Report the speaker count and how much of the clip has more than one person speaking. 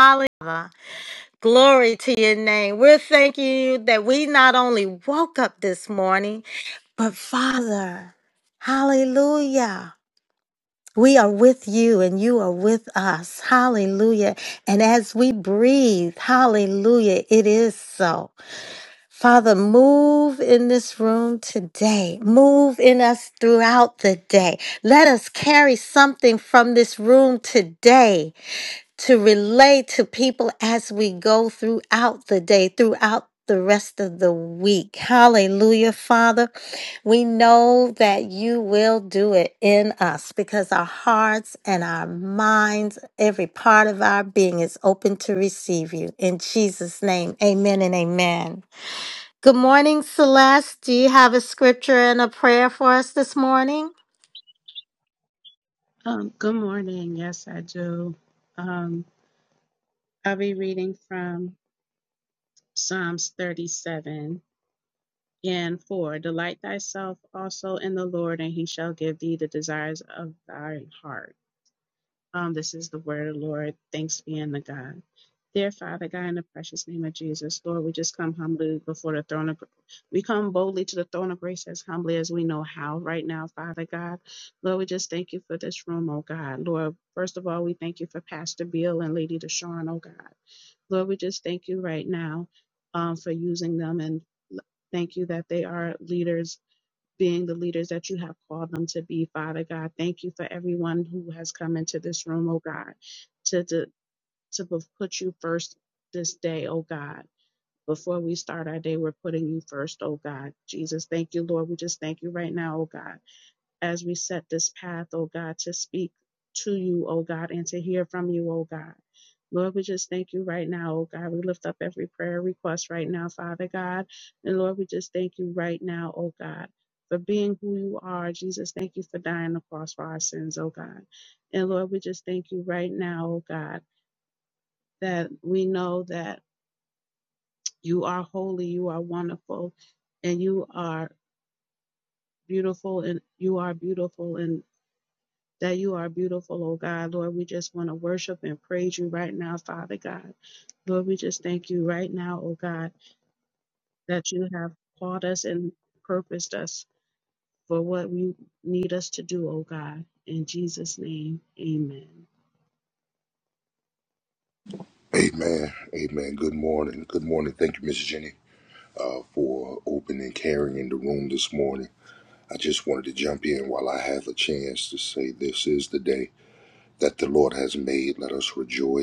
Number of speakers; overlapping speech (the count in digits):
3, no overlap